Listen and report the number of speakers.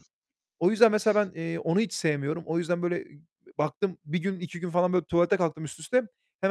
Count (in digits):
1